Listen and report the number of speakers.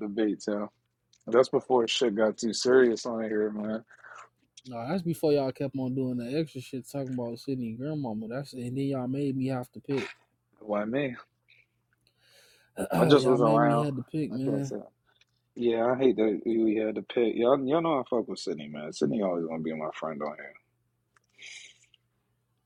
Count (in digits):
2